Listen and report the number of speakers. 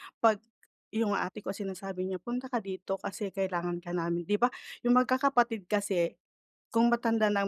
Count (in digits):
1